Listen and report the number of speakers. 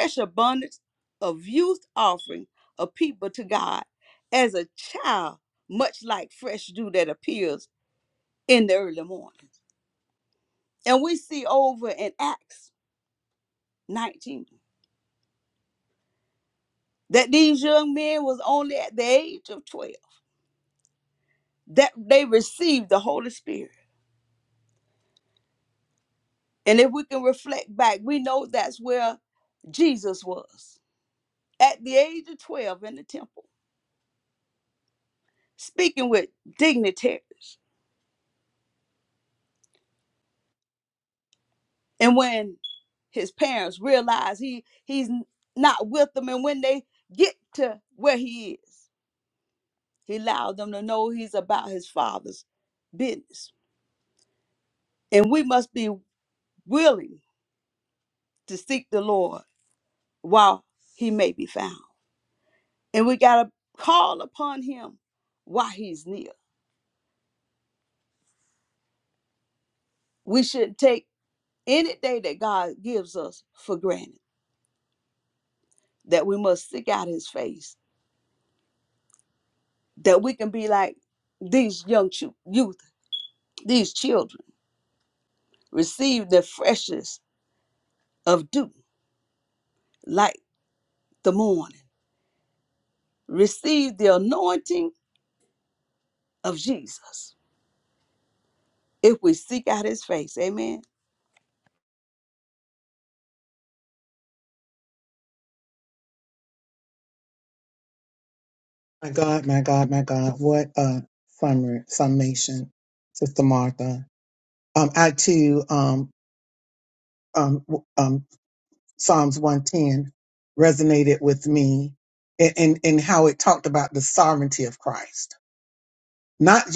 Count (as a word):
two